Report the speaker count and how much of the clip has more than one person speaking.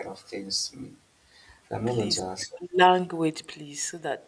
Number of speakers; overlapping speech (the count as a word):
two, about 8%